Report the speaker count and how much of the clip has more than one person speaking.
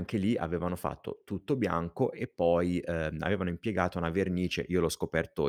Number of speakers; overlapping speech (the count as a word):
one, no overlap